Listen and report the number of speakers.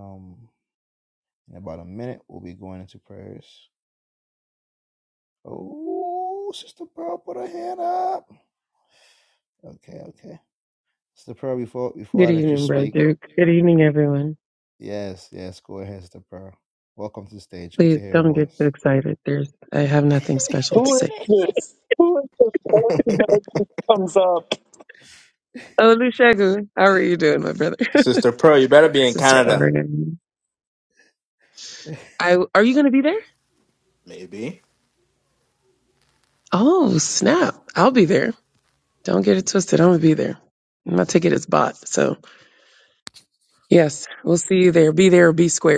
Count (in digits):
4